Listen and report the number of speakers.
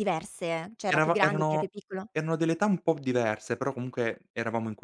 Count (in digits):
2